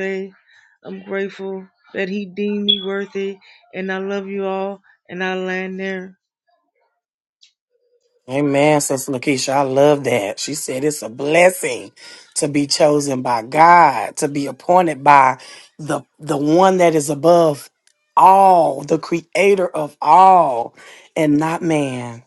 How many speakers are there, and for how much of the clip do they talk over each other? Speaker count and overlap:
2, no overlap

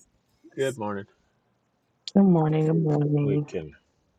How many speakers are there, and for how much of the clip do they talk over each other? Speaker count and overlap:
2, about 6%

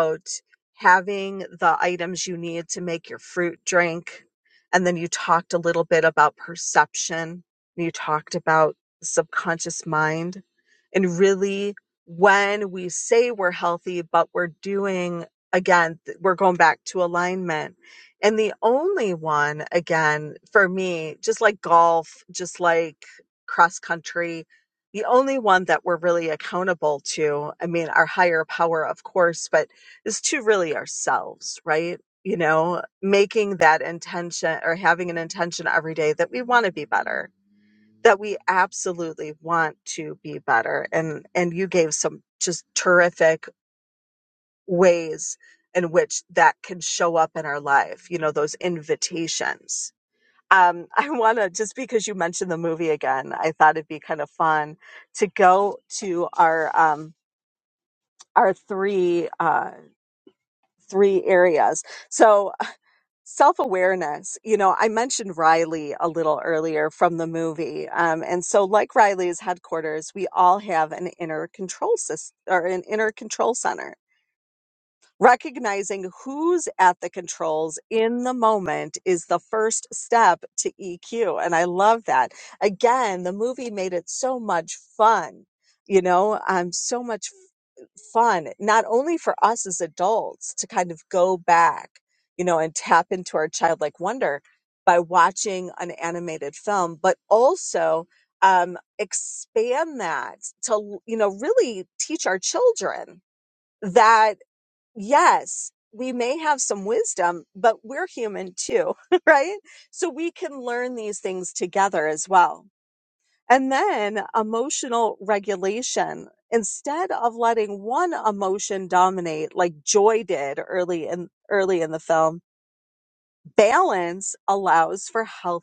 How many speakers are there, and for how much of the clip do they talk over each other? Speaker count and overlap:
1, no overlap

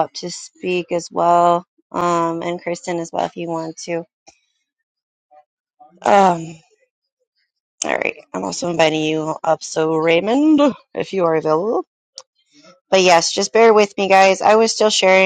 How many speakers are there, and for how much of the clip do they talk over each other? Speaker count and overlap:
1, no overlap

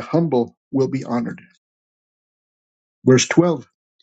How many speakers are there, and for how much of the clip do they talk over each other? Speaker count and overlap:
1, no overlap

